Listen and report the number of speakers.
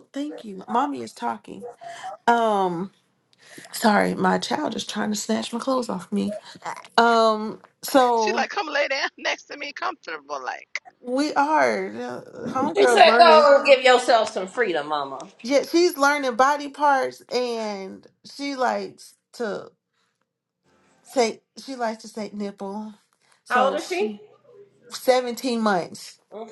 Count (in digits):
3